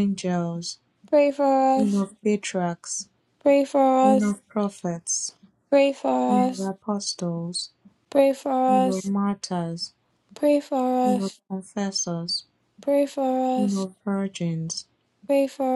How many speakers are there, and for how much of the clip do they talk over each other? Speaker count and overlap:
2, about 8%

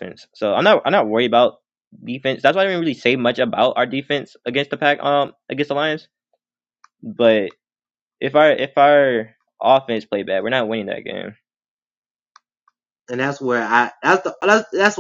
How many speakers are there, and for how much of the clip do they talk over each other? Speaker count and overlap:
2, no overlap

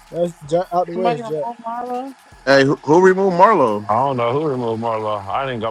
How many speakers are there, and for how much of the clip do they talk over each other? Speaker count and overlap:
4, about 11%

